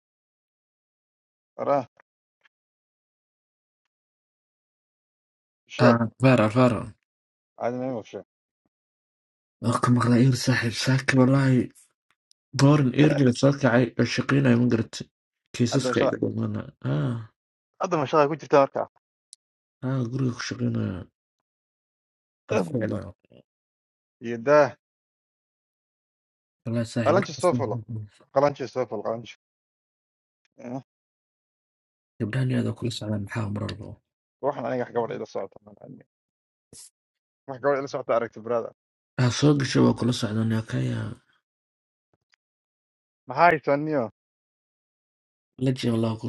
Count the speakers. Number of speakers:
2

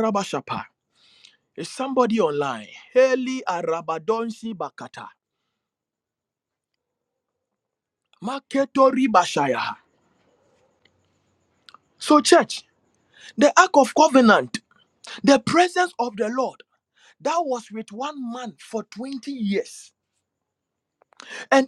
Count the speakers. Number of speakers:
1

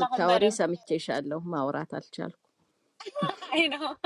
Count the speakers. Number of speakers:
2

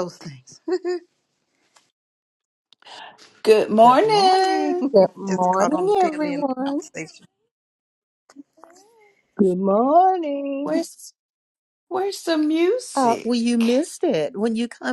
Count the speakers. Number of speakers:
4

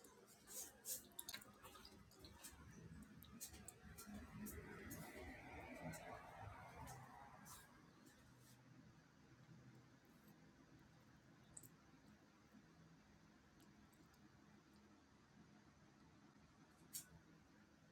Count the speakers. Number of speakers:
0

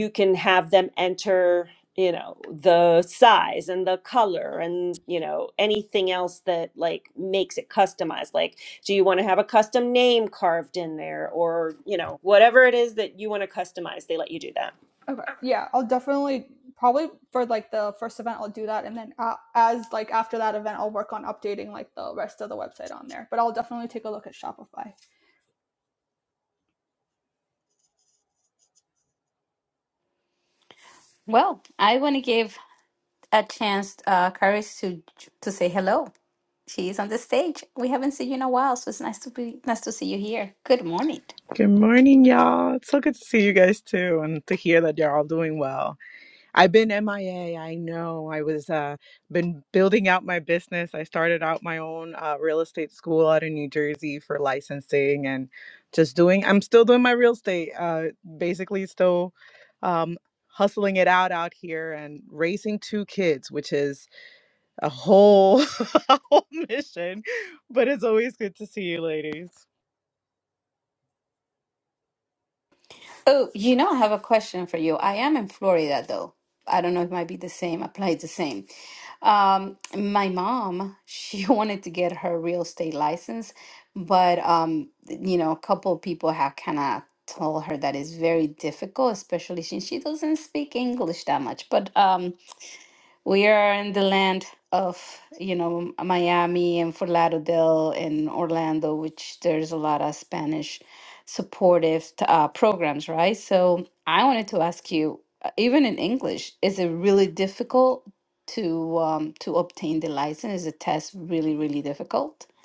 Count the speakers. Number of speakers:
4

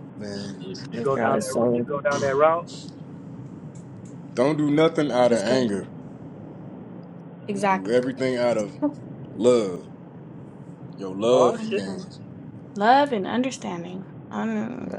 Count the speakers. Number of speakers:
3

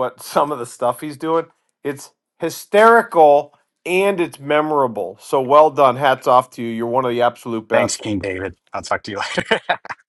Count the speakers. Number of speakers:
2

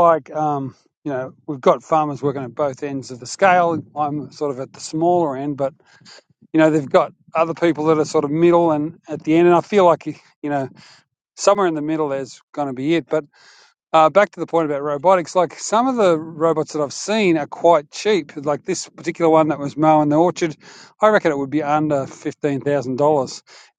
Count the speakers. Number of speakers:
1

